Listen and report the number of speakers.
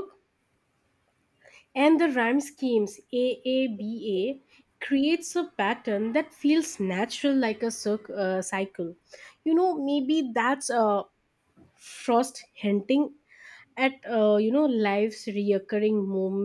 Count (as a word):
one